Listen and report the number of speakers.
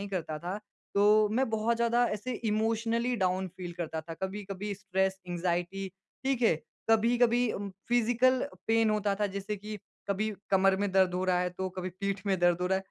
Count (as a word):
one